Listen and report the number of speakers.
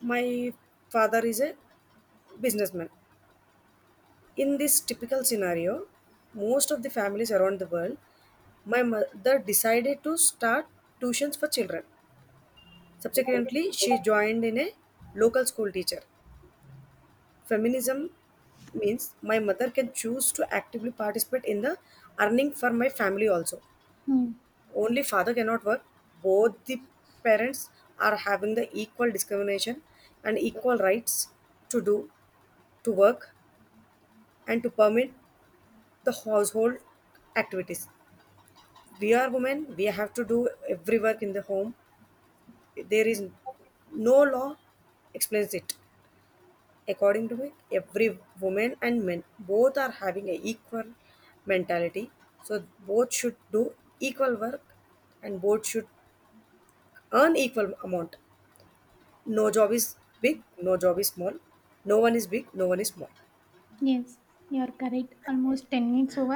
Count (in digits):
2